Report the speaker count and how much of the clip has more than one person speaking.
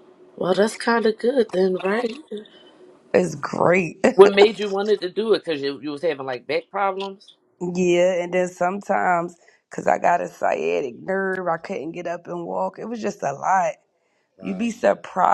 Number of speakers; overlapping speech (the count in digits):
2, about 2%